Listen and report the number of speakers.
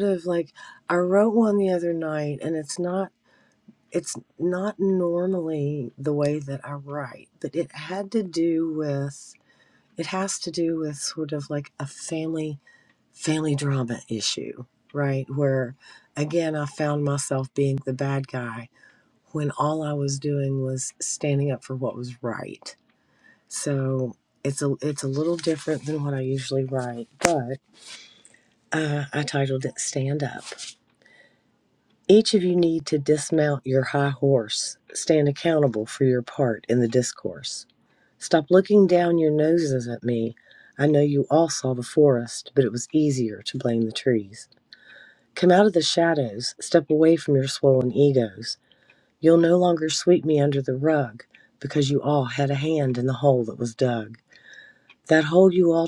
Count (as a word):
one